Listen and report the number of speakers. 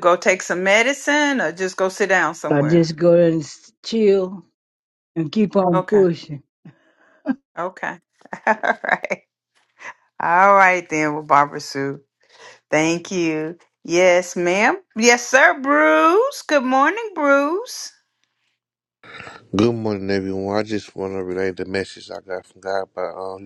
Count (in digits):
3